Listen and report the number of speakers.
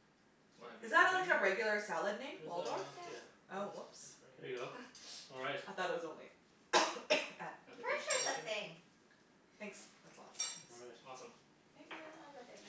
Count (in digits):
4